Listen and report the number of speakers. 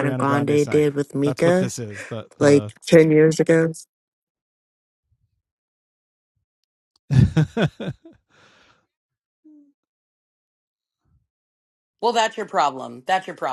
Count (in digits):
3